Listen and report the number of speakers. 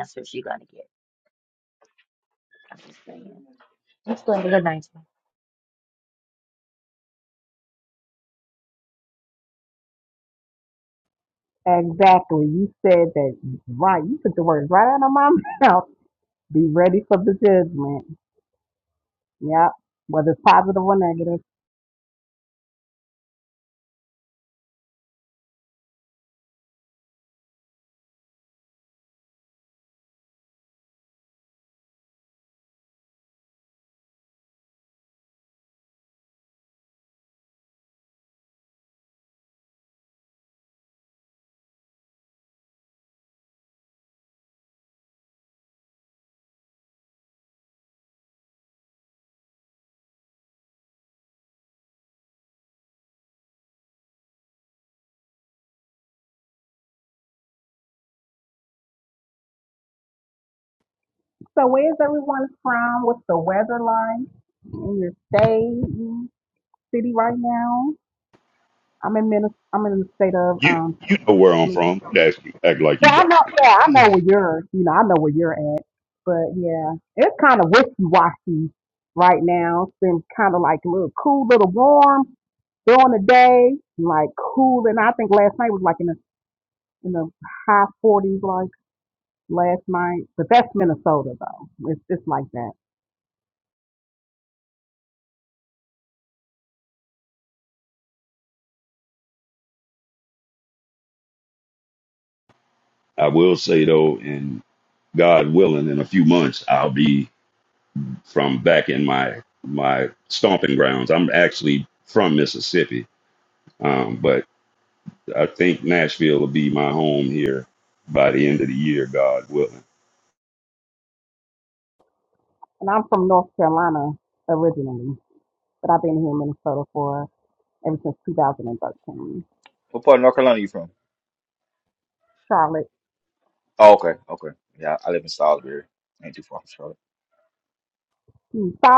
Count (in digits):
4